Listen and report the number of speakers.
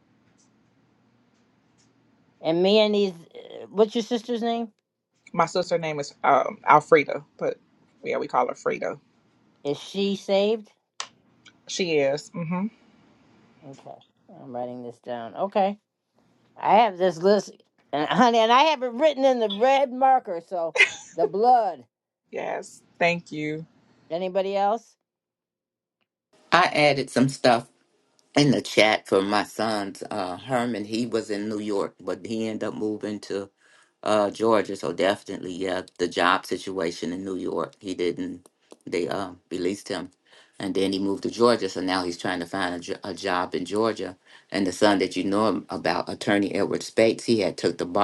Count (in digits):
3